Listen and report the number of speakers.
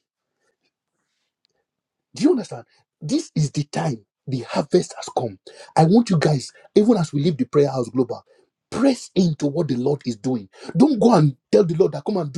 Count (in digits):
1